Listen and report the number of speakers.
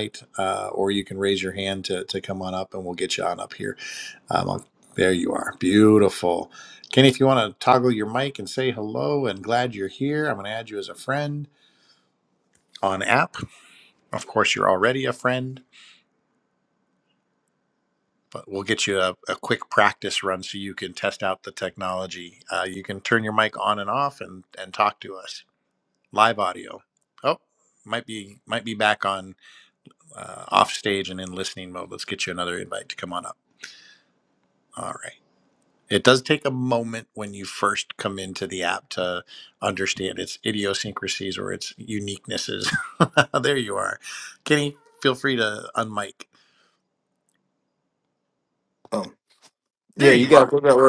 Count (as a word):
two